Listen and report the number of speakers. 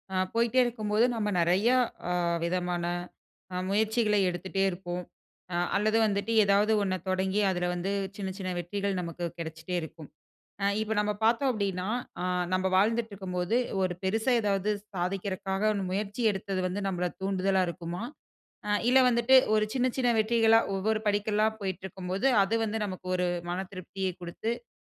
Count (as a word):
one